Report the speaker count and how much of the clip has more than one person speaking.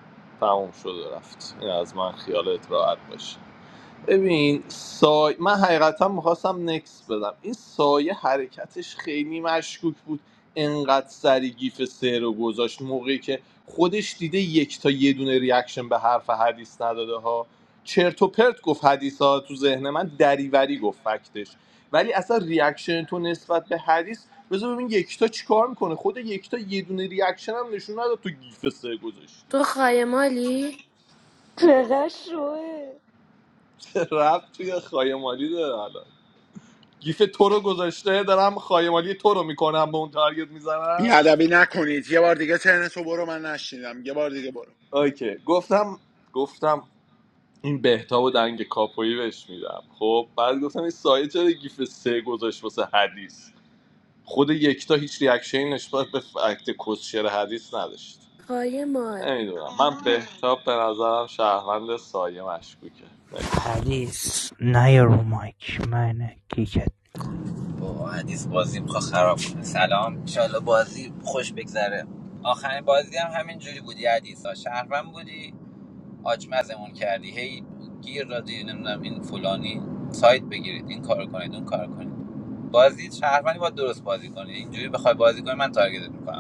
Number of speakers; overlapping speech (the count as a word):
six, under 1%